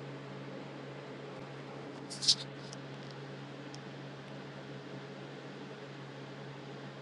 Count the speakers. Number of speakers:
zero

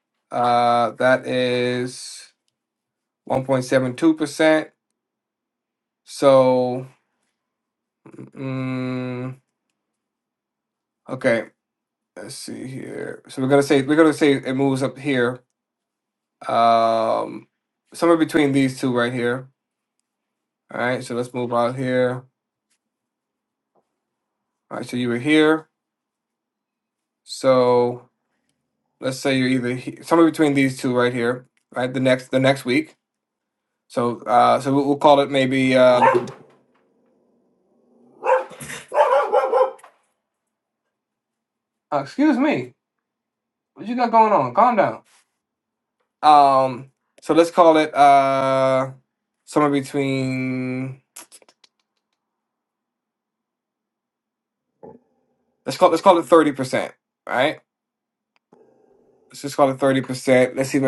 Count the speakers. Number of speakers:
one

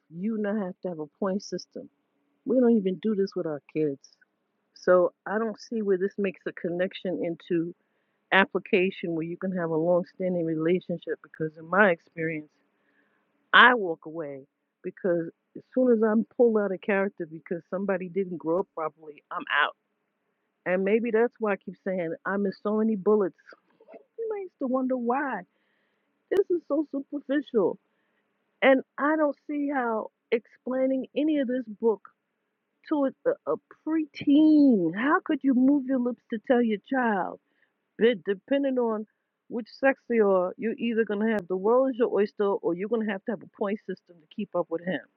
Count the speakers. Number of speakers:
one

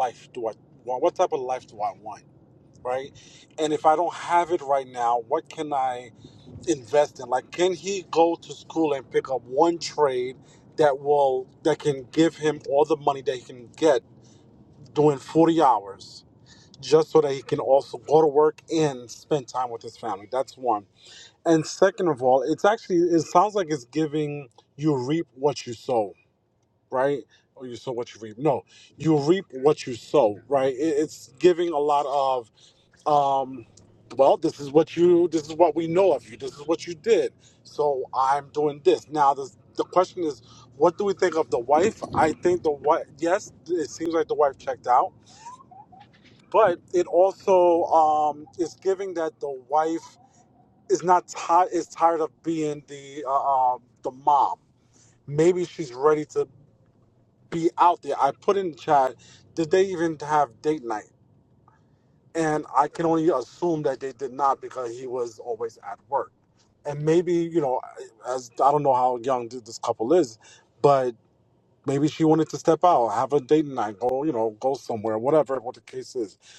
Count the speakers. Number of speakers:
one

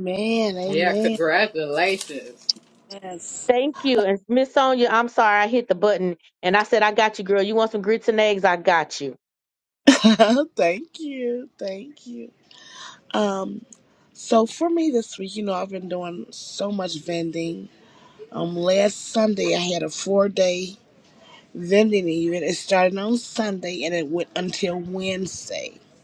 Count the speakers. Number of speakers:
three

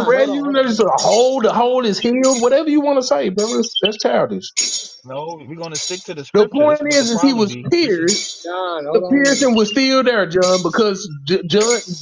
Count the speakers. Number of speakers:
three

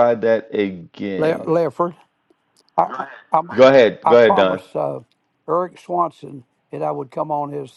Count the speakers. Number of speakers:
two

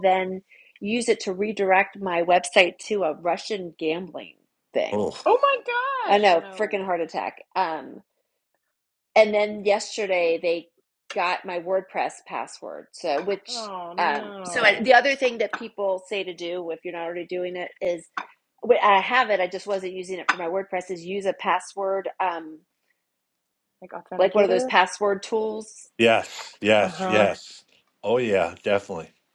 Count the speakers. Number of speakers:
three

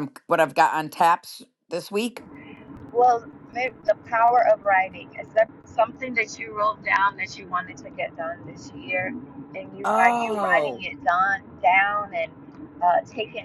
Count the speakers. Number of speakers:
two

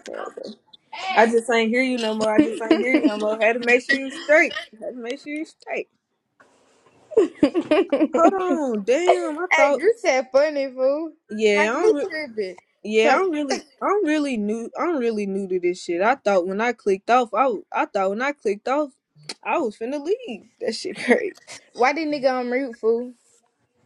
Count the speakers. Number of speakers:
two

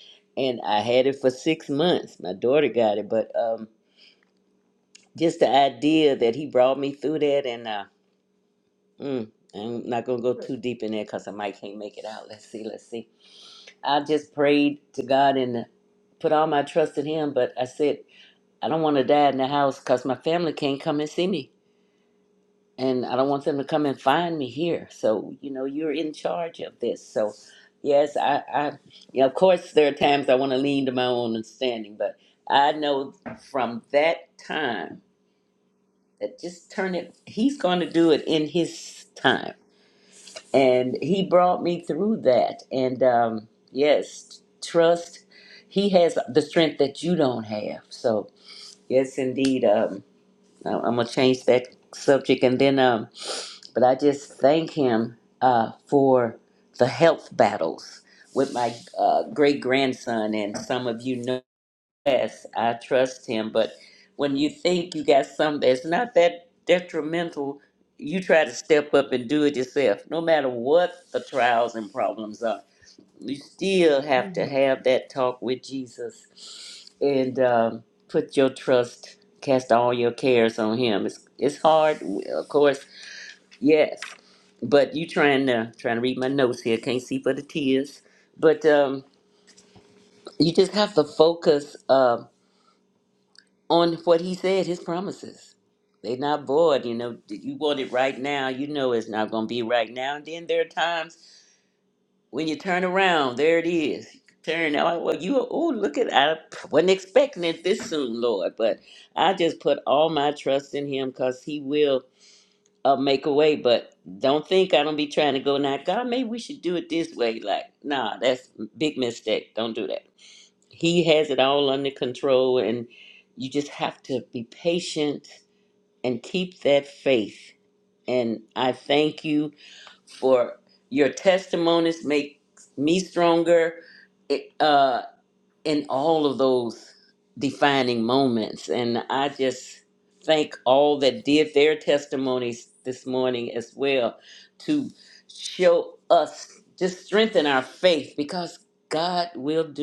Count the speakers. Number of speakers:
one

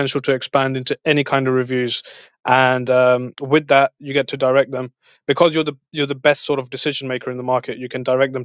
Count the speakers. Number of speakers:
one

